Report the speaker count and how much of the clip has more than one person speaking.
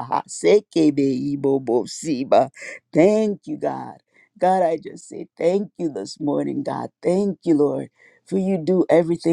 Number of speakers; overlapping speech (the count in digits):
1, no overlap